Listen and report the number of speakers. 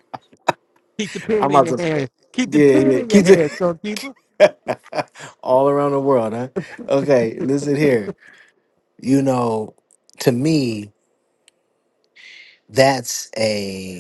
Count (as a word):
two